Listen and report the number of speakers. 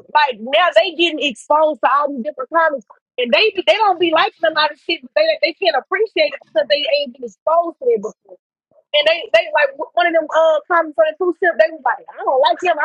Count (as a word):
one